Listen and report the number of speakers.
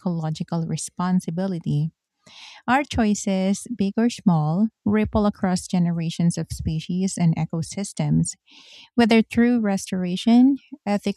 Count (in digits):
1